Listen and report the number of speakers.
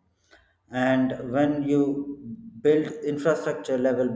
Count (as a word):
one